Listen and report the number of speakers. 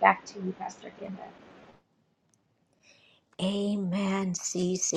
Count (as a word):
two